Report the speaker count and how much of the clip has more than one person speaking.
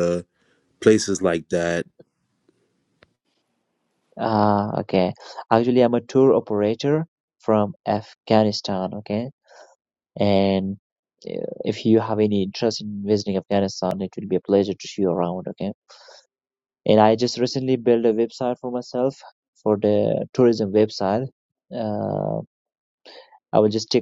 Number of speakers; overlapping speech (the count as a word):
two, no overlap